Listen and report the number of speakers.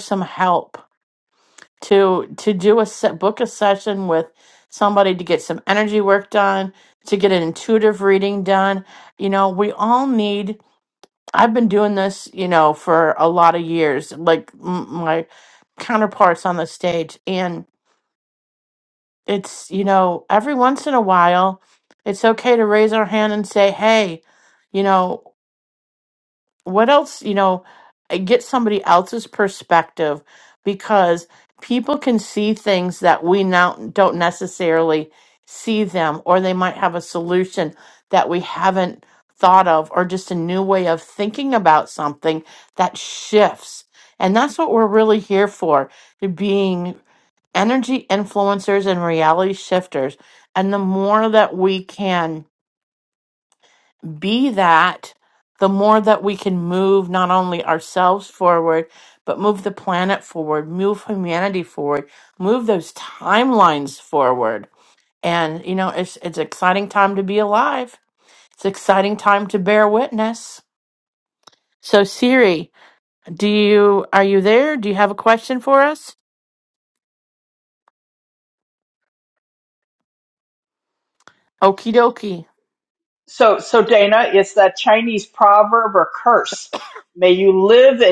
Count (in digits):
2